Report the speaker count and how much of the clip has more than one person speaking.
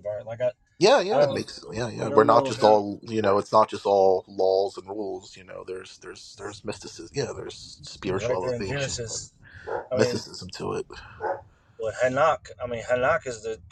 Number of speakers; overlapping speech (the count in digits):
2, about 17%